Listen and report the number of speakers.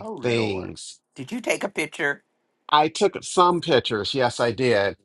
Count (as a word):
two